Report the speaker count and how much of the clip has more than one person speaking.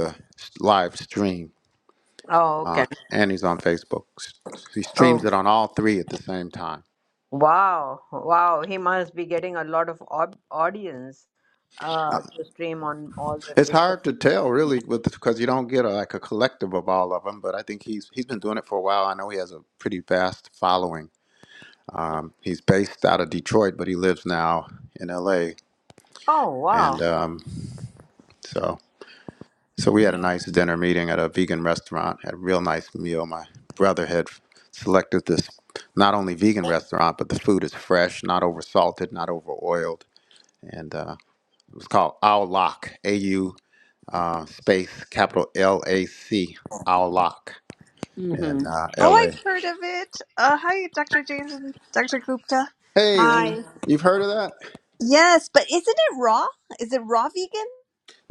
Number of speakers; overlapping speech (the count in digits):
3, about 4%